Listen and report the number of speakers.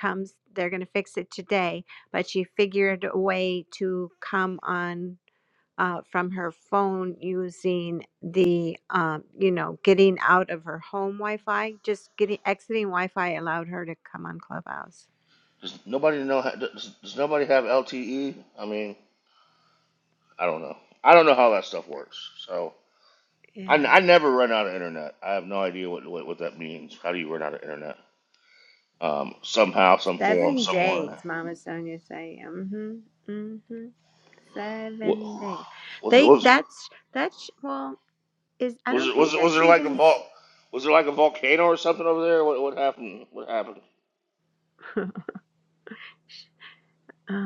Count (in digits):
2